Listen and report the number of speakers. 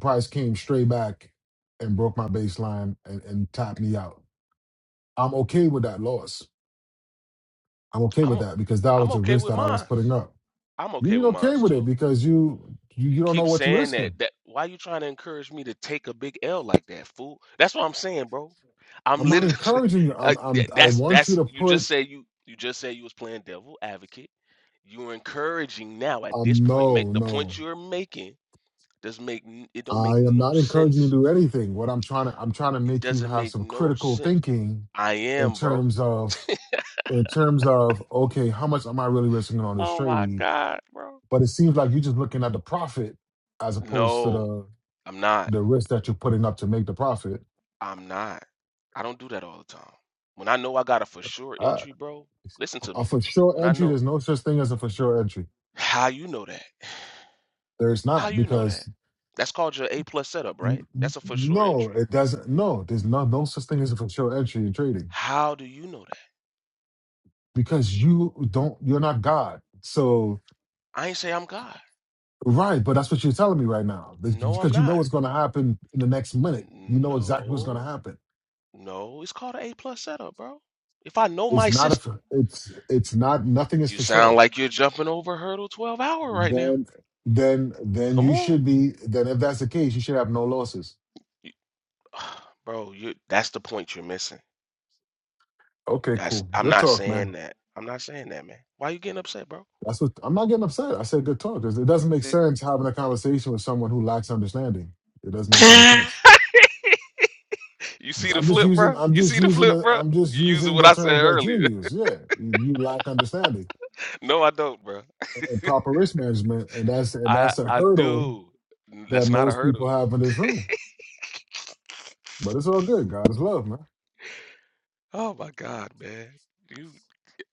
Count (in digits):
2